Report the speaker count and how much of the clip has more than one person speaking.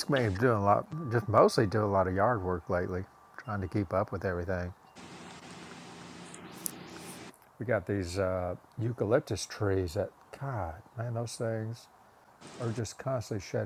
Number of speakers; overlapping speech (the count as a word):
one, no overlap